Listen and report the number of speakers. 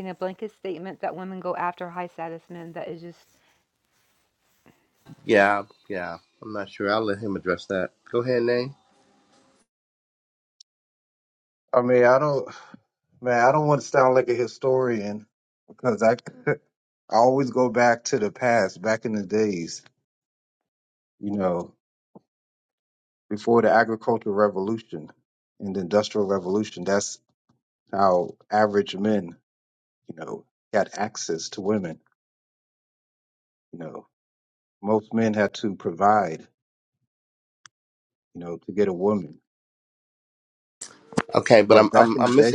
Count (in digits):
3